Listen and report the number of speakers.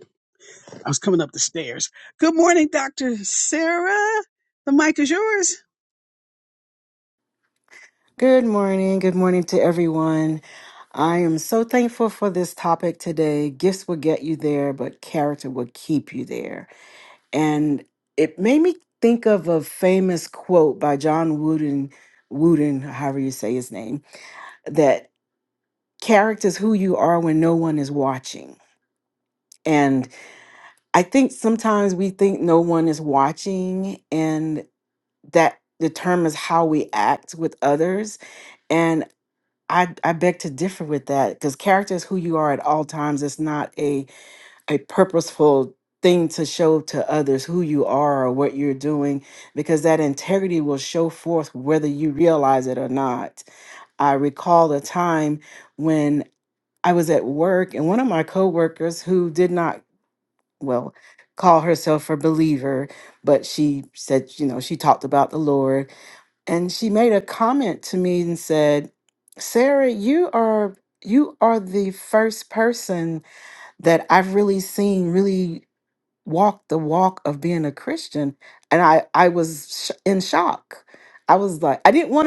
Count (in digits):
2